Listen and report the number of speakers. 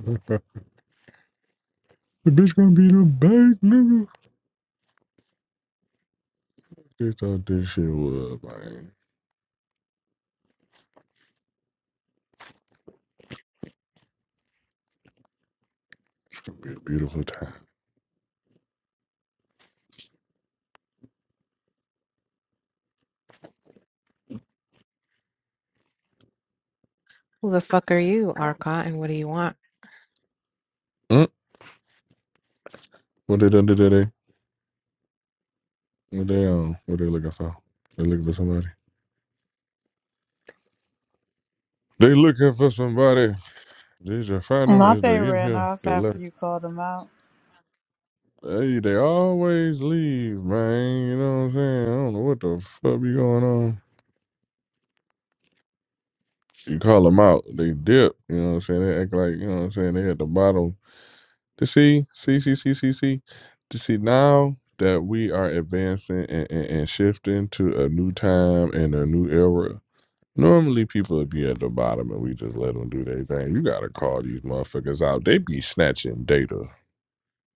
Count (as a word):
three